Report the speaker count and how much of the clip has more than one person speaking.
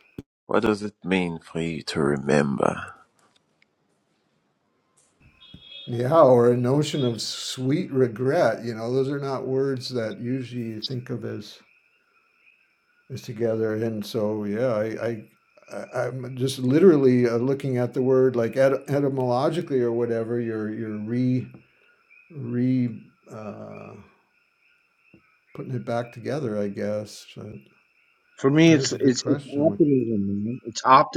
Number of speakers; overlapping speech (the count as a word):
three, about 3%